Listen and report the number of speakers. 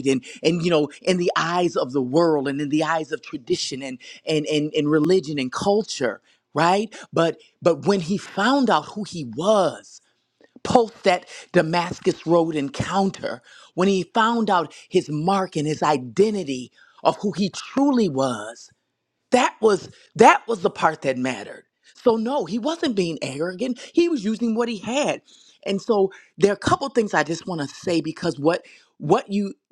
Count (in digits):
1